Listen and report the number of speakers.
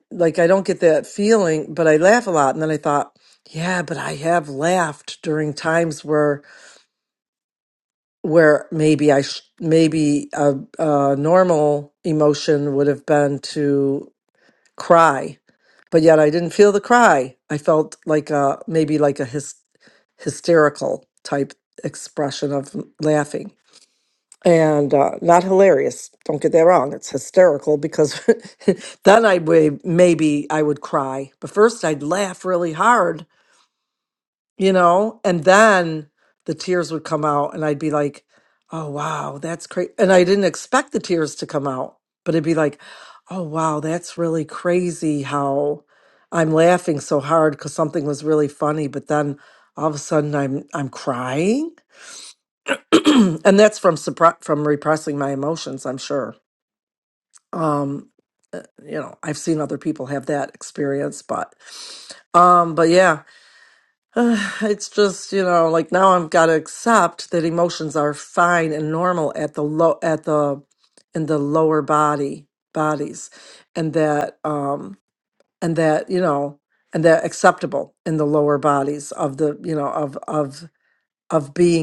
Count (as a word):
one